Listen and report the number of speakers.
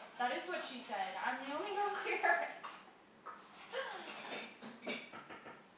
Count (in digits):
1